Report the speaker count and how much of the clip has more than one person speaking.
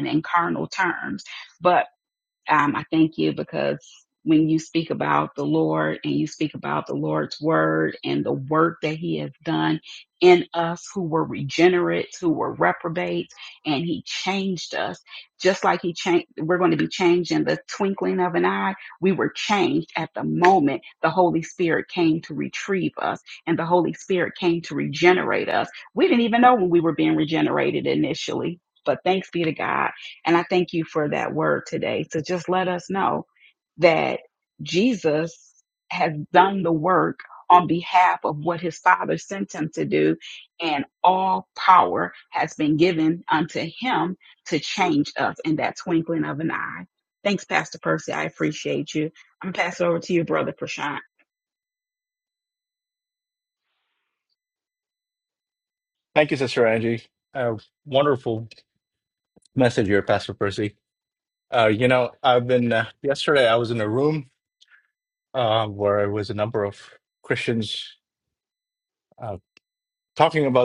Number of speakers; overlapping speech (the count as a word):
two, no overlap